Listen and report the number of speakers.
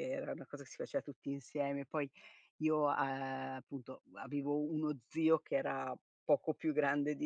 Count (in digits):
1